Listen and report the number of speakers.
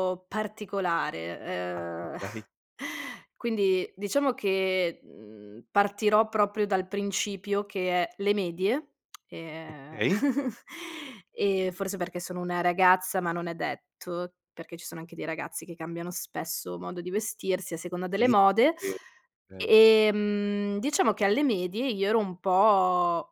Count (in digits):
2